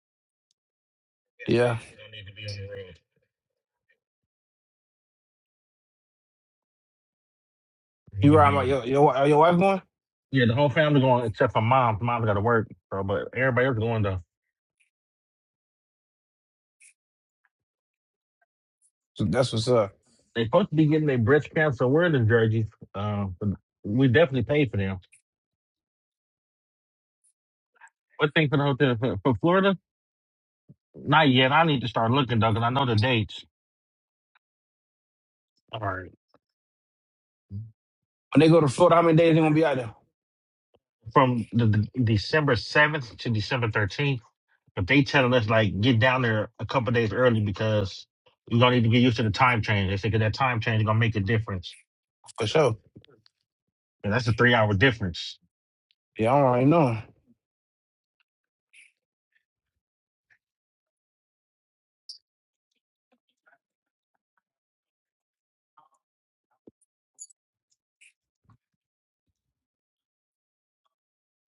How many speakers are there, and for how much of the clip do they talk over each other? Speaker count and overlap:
2, about 1%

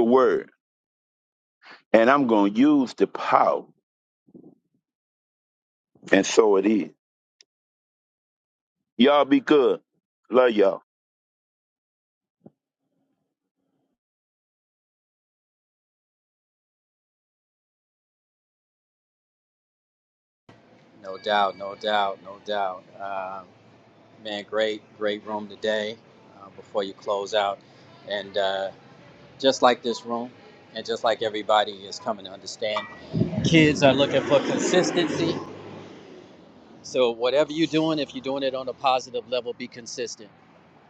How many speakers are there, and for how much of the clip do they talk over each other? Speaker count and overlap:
2, no overlap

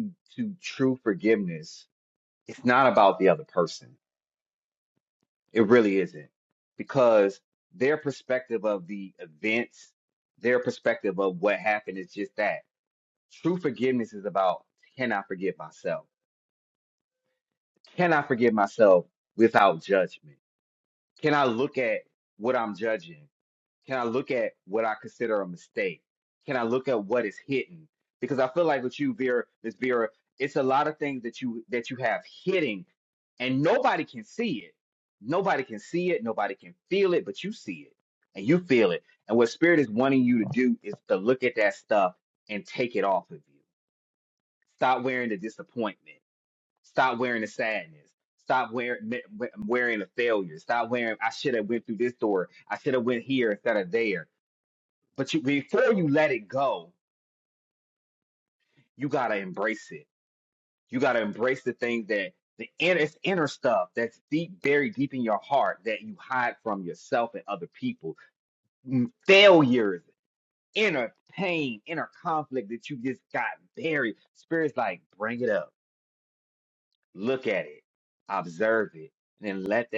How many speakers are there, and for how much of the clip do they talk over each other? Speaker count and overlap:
1, no overlap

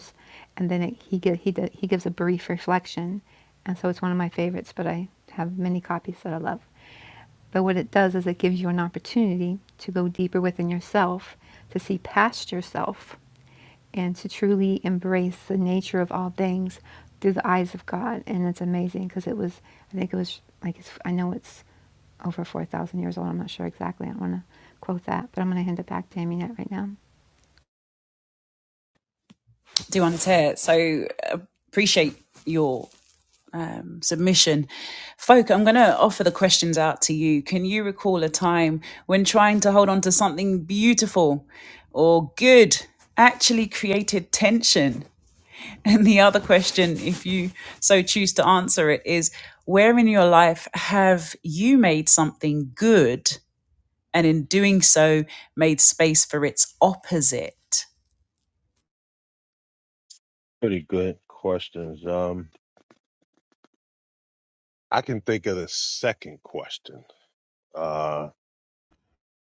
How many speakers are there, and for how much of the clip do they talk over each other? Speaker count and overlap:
3, no overlap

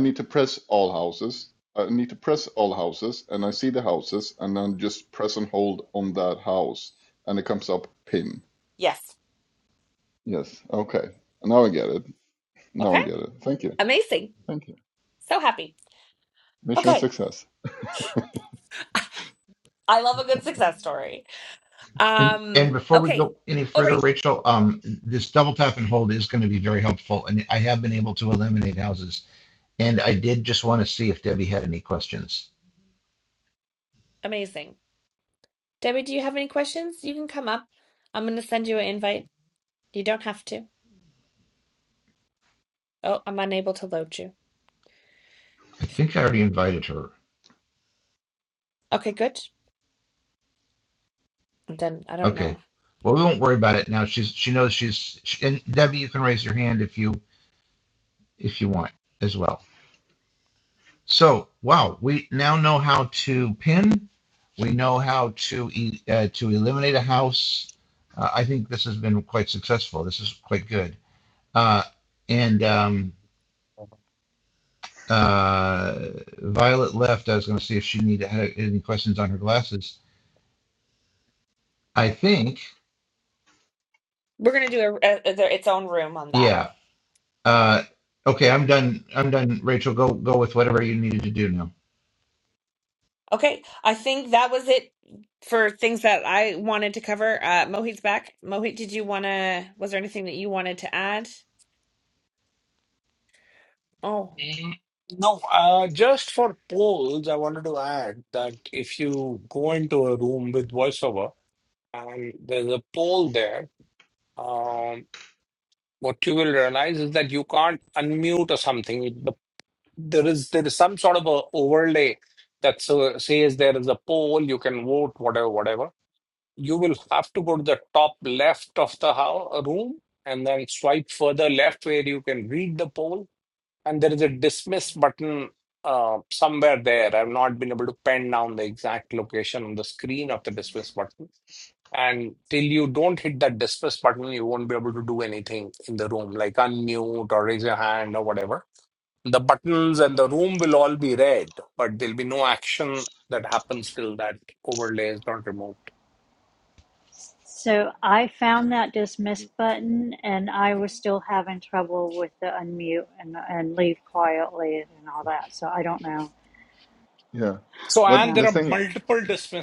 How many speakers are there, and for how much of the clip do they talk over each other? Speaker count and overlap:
5, about 2%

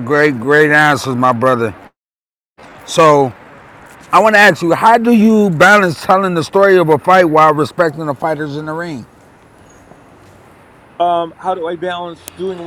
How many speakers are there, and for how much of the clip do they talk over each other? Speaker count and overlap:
2, no overlap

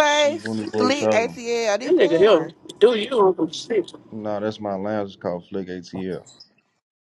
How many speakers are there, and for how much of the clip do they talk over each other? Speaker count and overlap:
3, about 21%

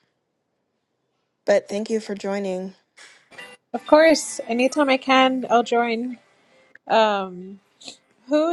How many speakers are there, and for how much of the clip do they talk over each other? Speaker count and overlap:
2, no overlap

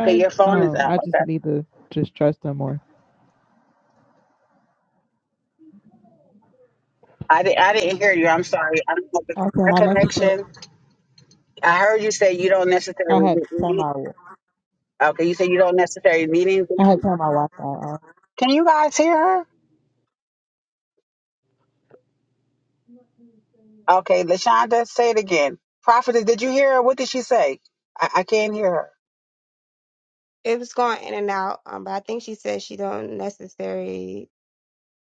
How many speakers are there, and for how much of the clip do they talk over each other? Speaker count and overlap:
3, about 9%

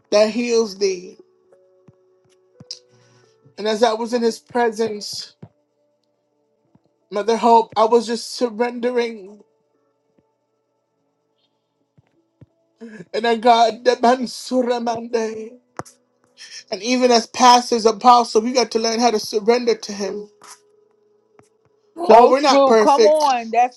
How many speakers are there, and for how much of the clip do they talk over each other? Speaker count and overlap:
2, about 5%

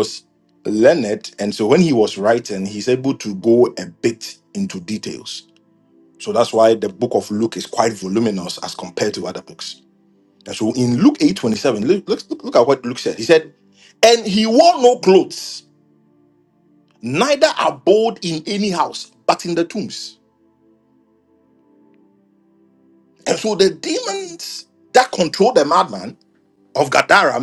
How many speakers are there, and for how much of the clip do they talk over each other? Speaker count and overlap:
1, no overlap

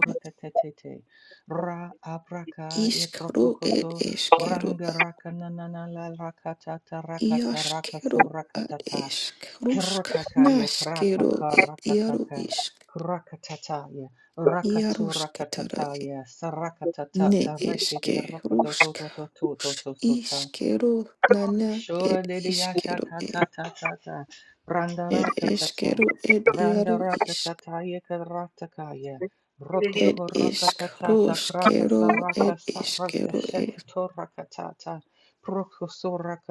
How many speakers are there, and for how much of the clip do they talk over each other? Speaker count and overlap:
2, about 46%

